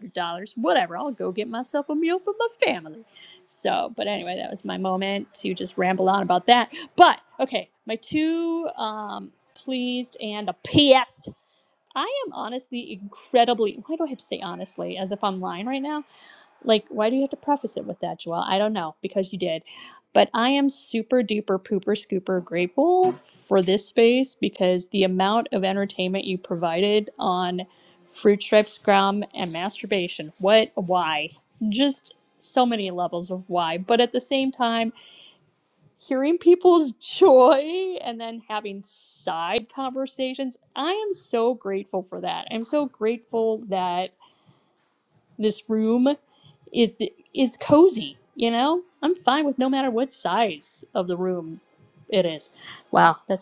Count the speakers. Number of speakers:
one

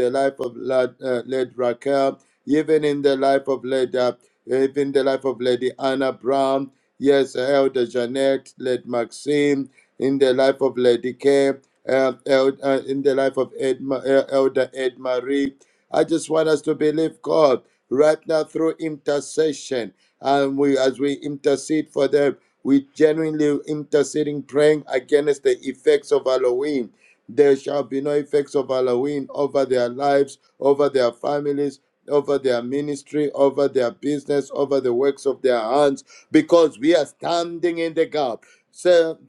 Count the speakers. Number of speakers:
one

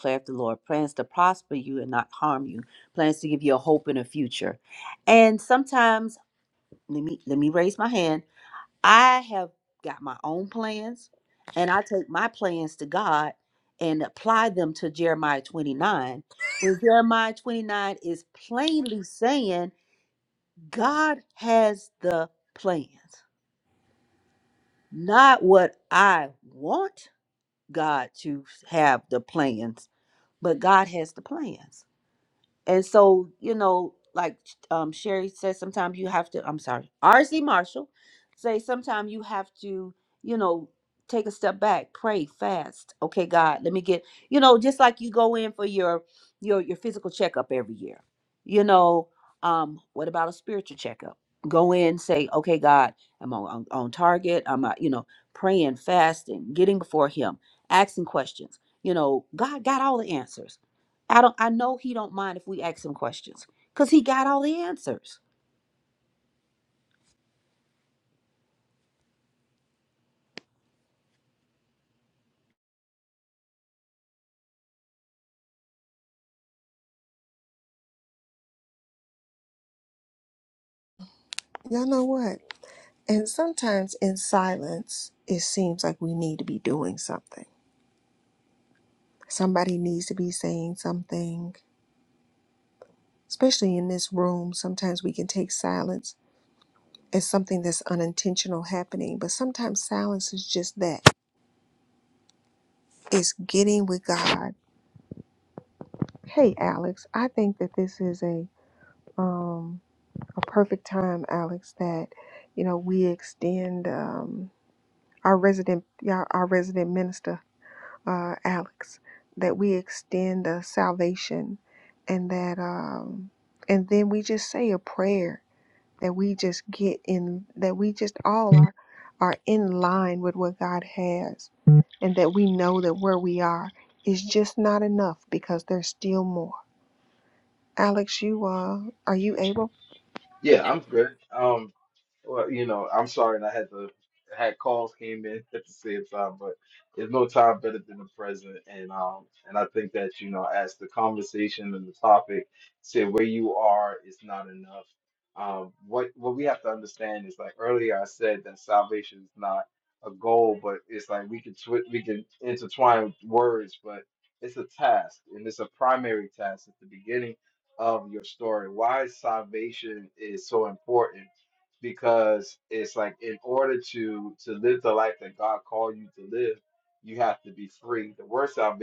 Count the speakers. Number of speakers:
three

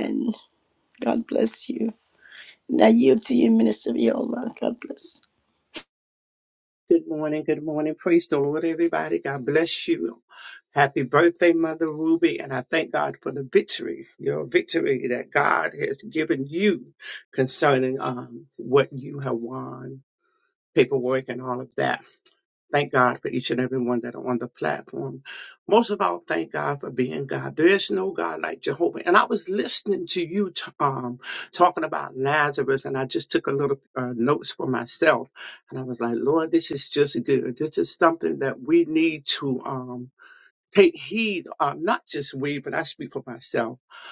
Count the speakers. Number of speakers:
two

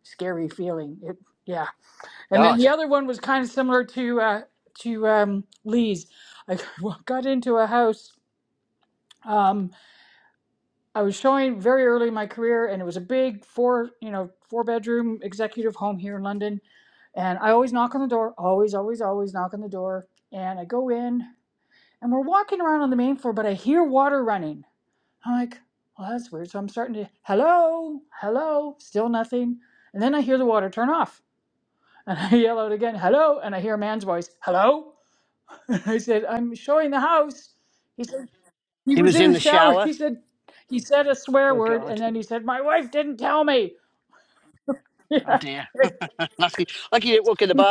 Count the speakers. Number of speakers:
two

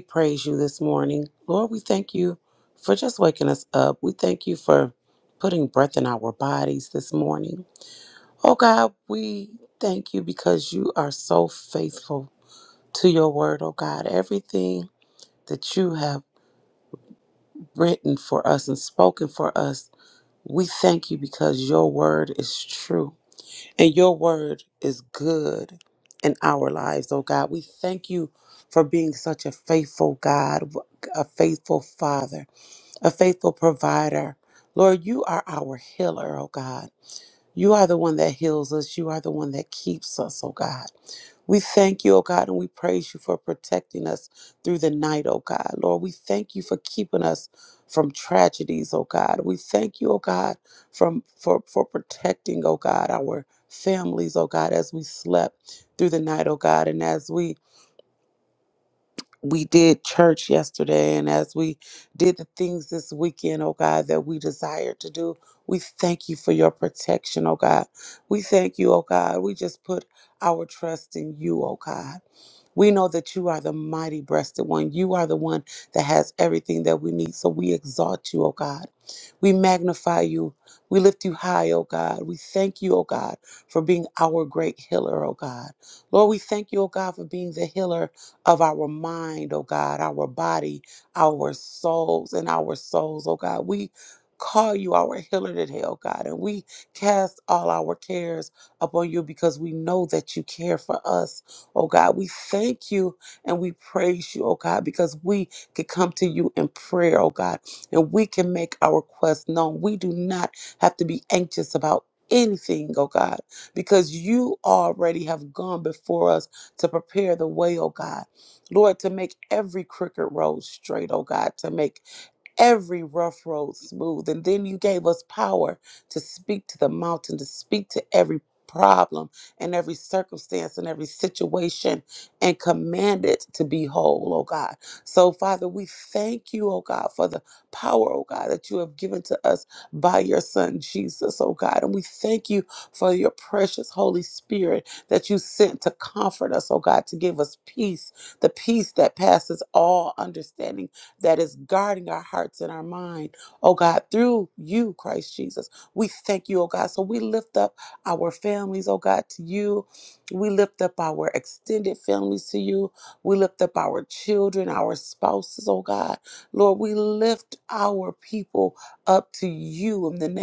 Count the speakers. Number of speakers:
one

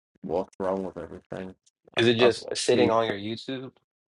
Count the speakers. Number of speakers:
two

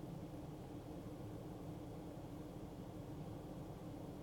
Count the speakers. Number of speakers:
zero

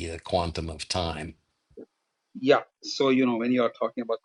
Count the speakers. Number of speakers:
two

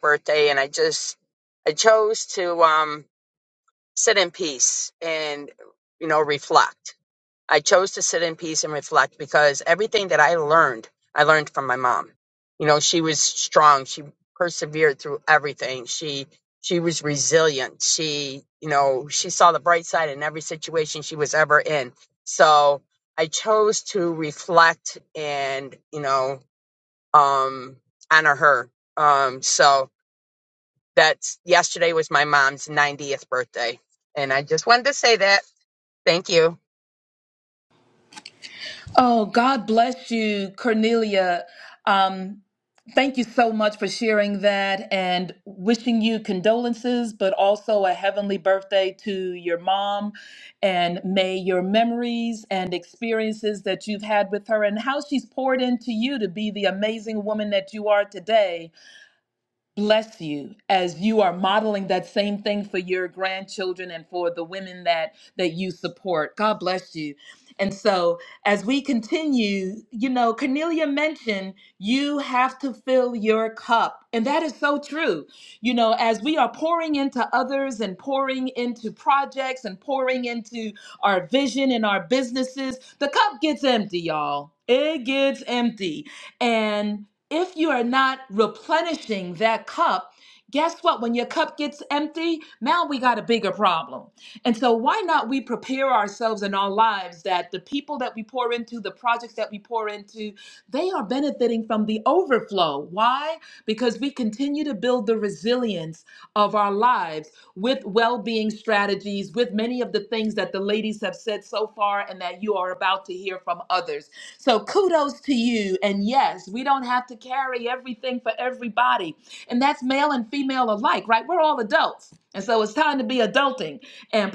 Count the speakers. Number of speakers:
two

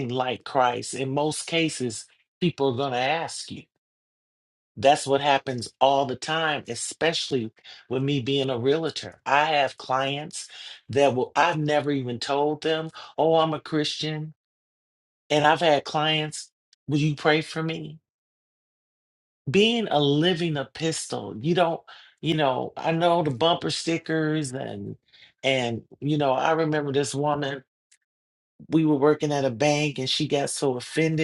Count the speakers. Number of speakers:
one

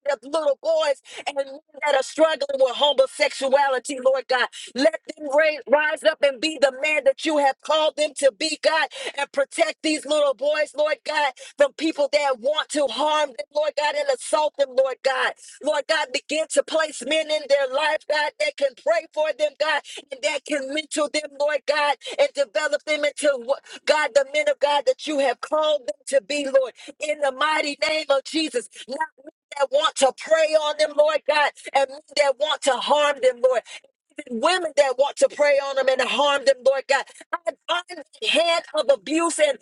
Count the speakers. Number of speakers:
one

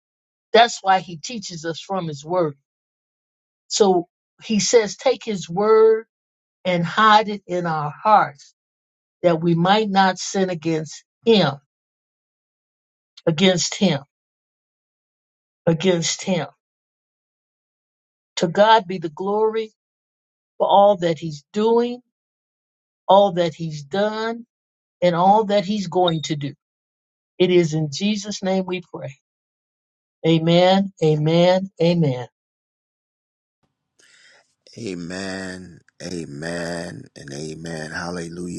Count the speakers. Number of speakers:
two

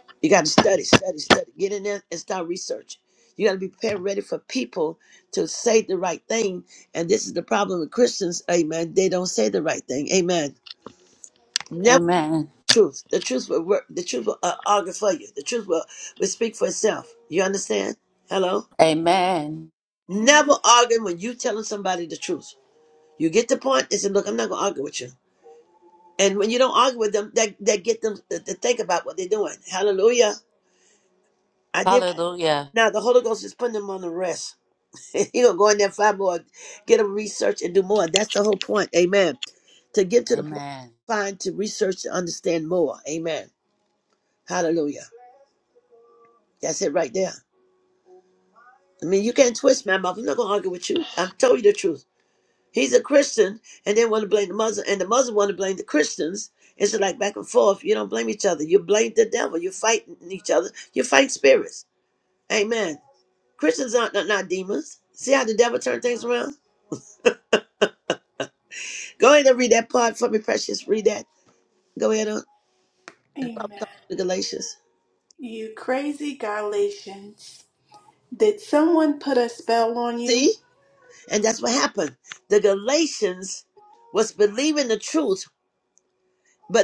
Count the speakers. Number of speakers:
three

